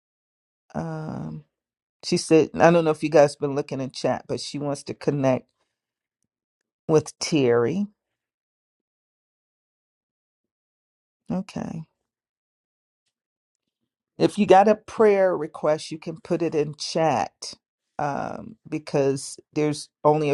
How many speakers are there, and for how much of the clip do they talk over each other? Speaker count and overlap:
one, no overlap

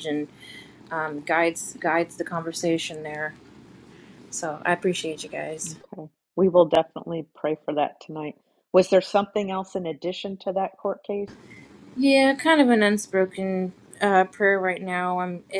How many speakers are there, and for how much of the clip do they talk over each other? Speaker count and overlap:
two, no overlap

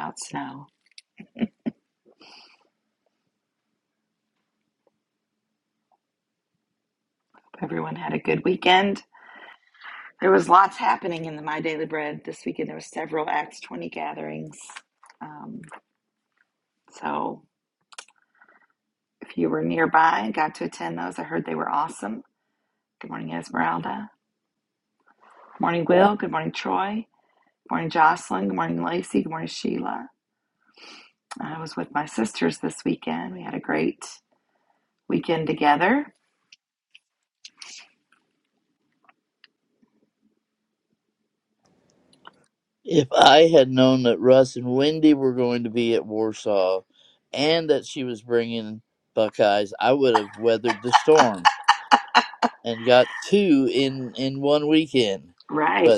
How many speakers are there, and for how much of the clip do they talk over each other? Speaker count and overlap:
two, under 1%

